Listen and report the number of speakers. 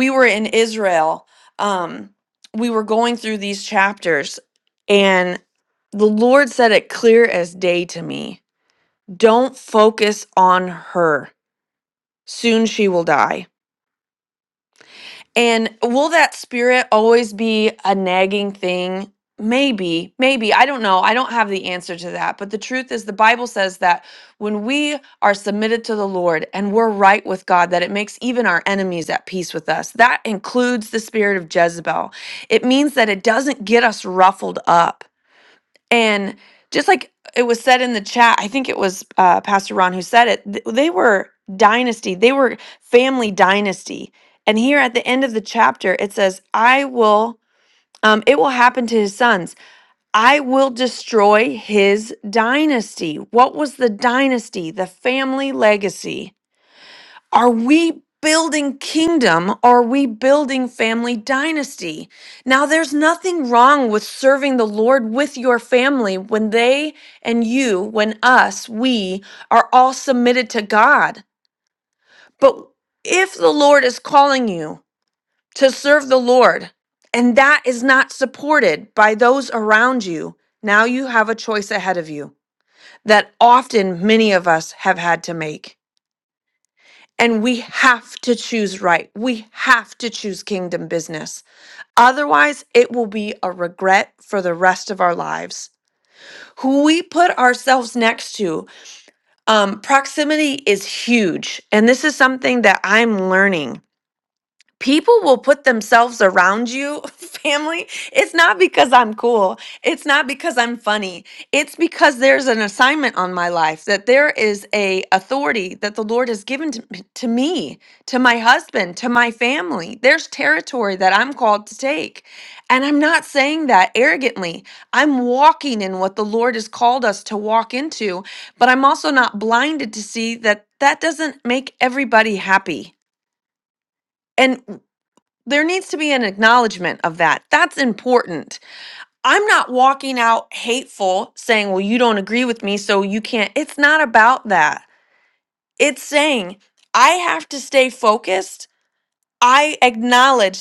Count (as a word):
one